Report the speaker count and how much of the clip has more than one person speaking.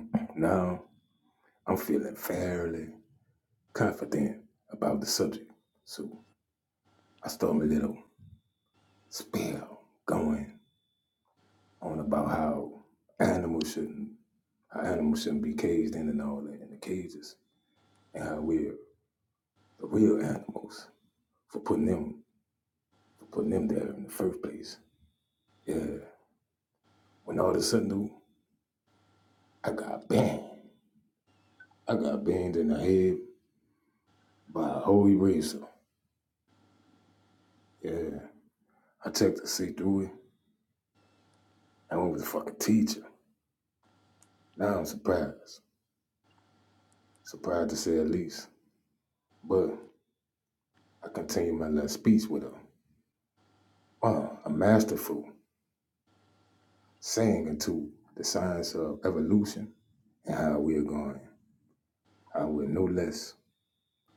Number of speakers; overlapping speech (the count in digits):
1, no overlap